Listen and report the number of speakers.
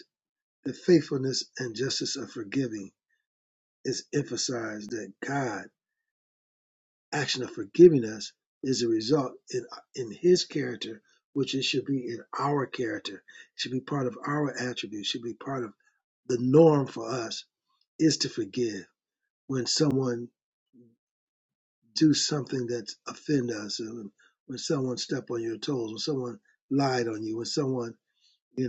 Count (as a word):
one